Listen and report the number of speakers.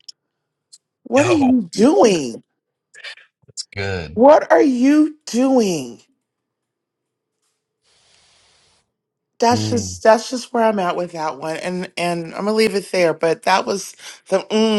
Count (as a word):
two